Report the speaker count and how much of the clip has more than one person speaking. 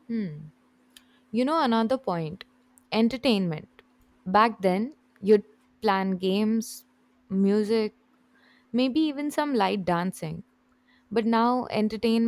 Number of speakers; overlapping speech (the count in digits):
1, no overlap